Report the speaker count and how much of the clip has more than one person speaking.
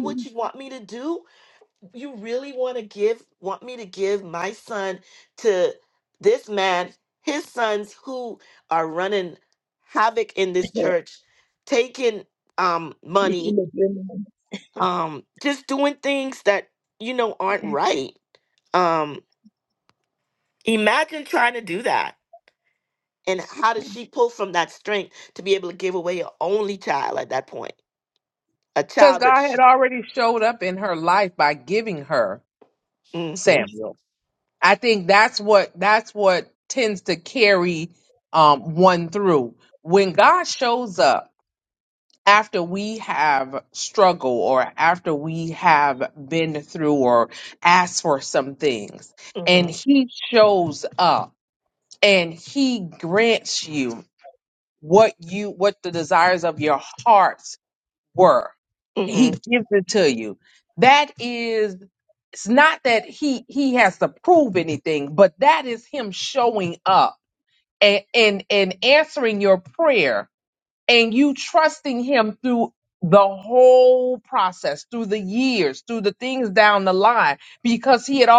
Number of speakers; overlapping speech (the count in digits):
3, about 3%